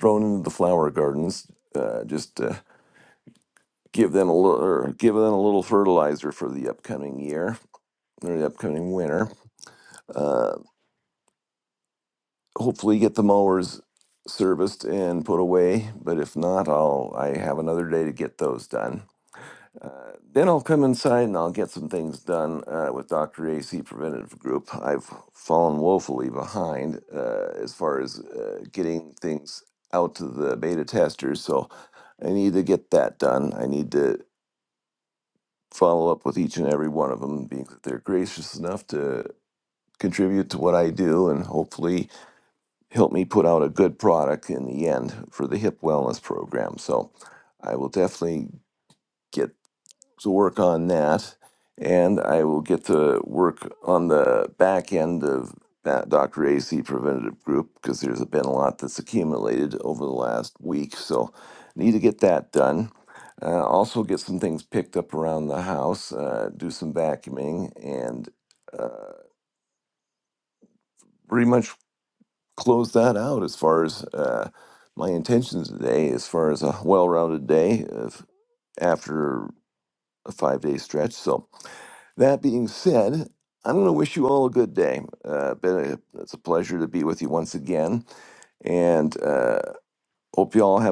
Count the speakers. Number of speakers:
1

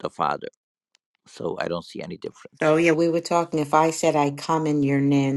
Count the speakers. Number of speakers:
2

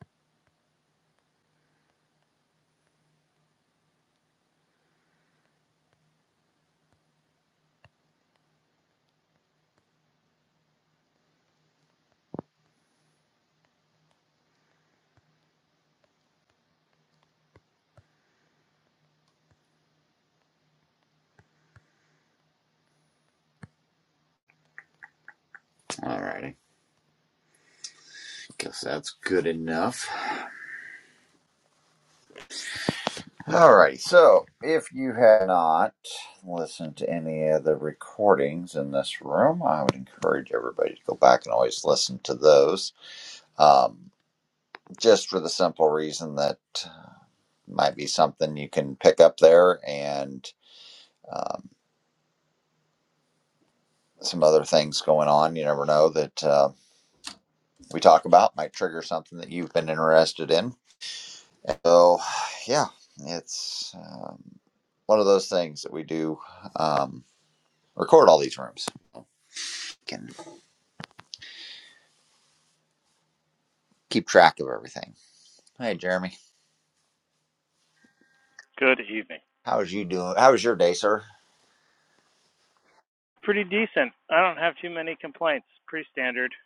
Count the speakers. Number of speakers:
2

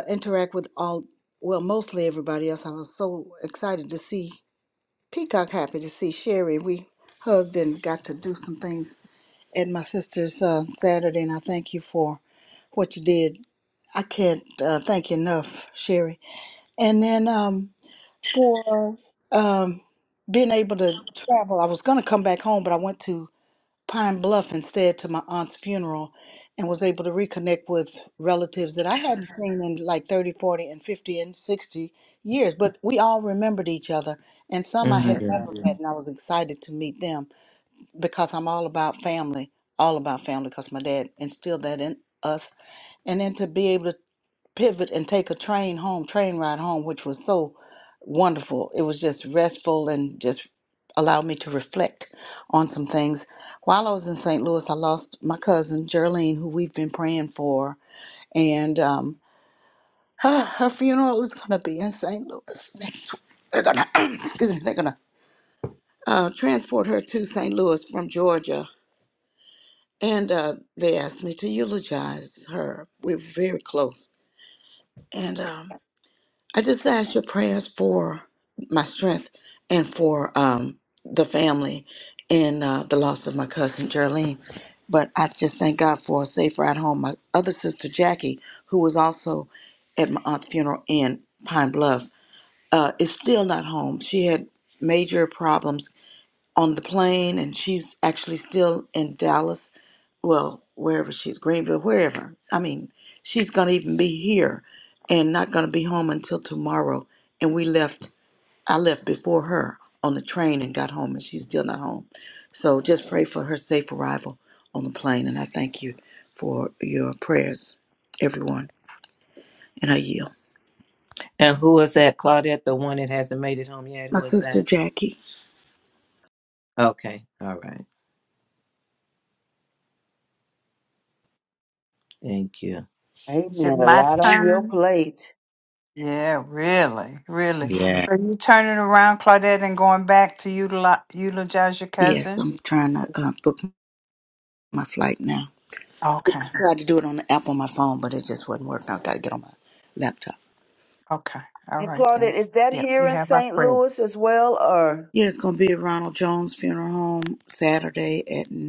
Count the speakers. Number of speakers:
4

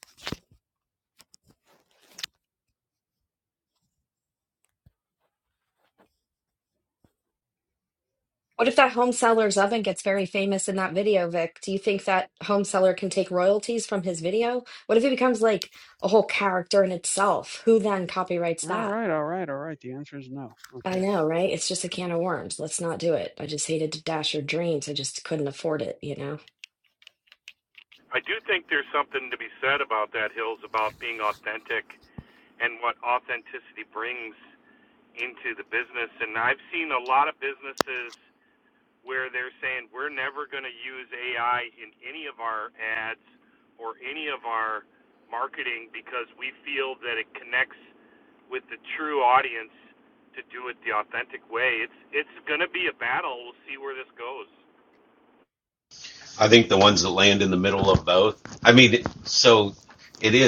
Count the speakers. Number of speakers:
4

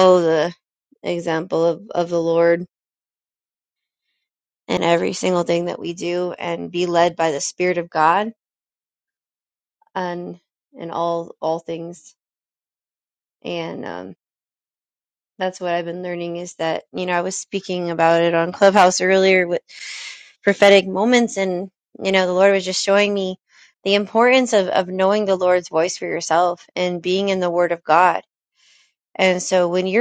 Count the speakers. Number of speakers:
1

